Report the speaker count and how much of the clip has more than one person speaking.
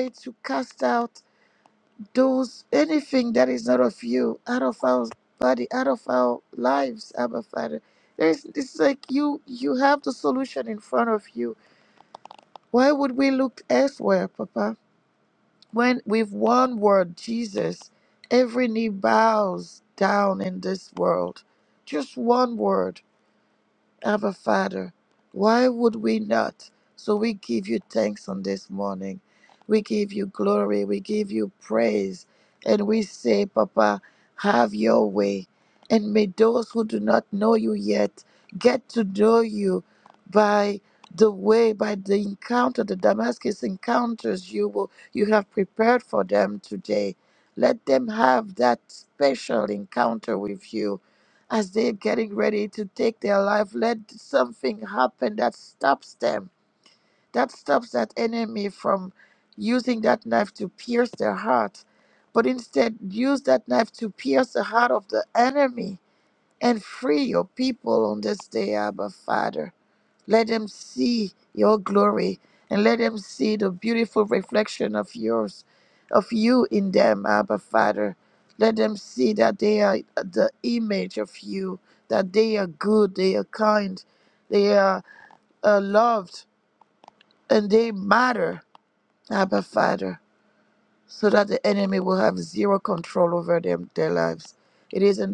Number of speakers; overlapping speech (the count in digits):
1, no overlap